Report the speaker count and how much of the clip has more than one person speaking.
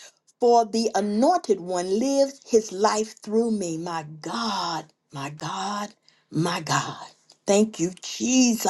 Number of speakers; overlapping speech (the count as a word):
one, no overlap